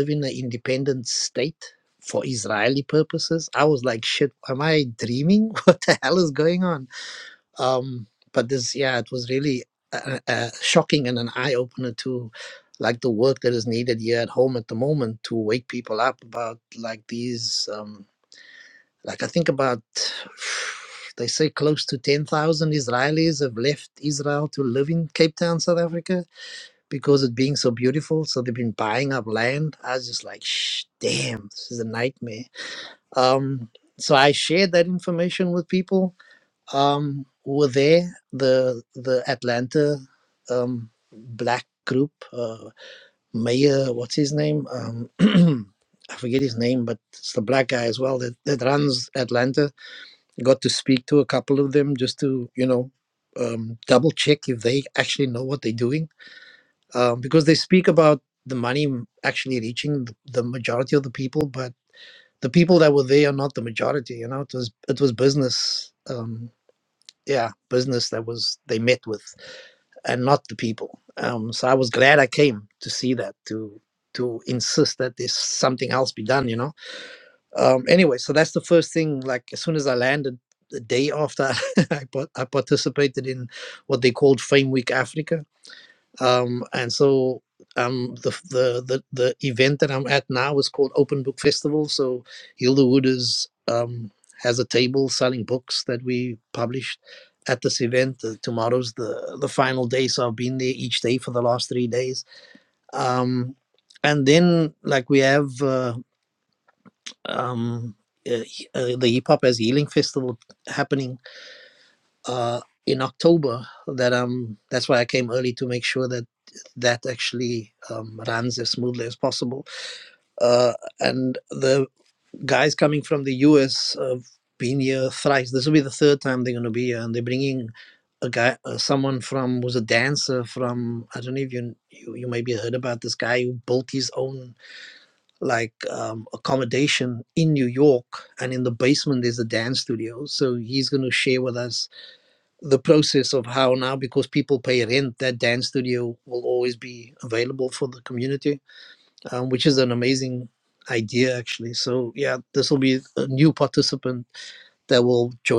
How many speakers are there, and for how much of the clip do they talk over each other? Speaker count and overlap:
one, no overlap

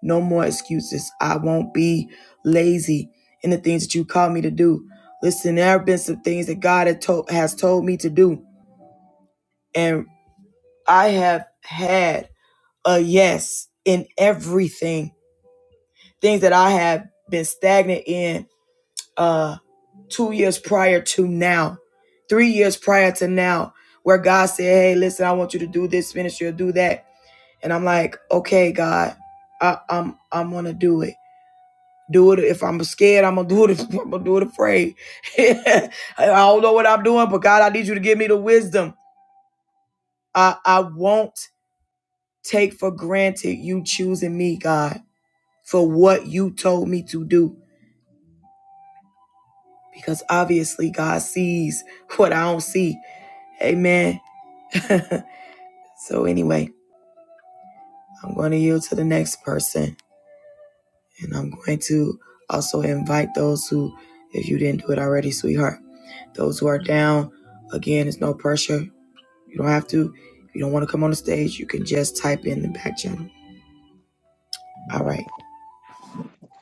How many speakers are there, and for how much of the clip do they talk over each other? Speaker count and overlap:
one, no overlap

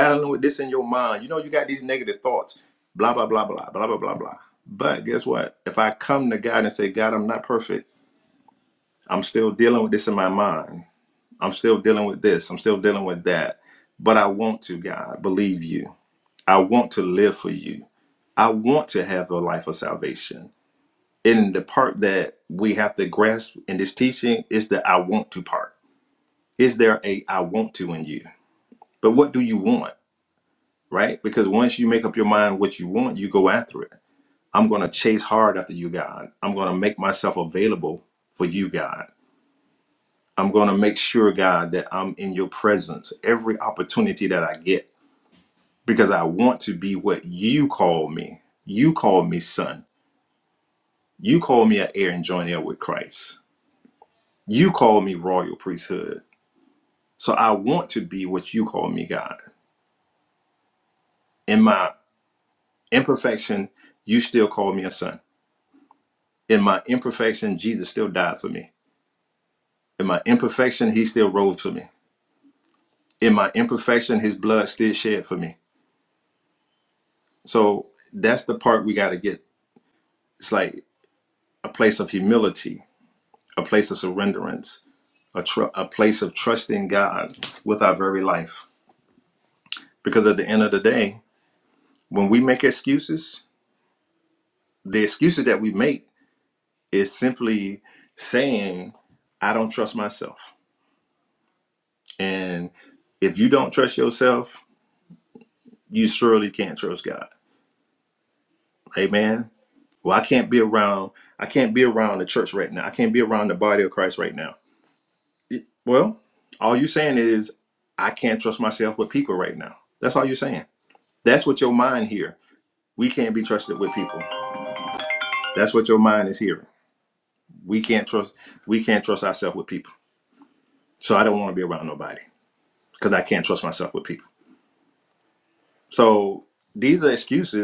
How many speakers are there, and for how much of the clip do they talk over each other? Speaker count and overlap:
one, no overlap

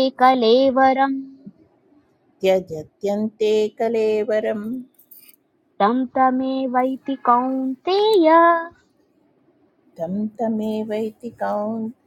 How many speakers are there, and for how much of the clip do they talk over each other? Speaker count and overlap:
two, no overlap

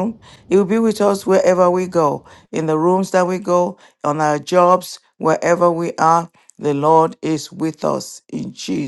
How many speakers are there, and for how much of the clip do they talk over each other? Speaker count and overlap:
one, no overlap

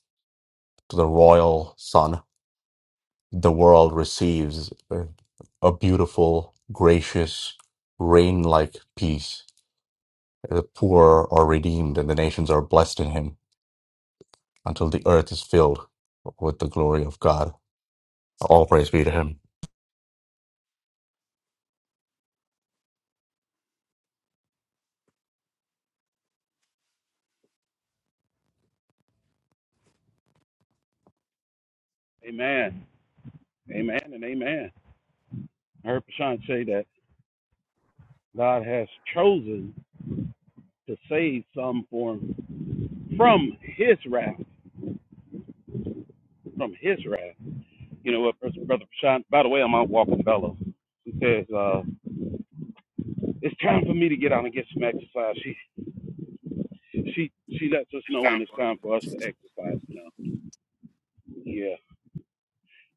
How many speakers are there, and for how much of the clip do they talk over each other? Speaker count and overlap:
two, no overlap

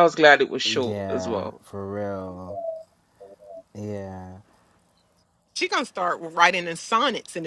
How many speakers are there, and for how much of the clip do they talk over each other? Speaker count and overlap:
three, about 12%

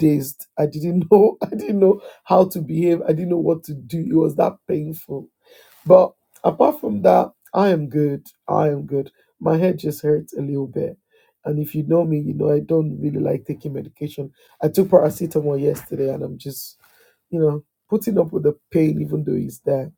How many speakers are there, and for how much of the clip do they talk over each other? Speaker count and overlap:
one, no overlap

